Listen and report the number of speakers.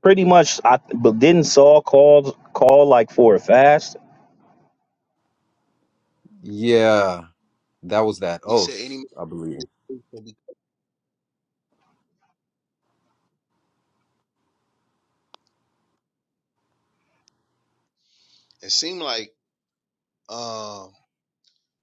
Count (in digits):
3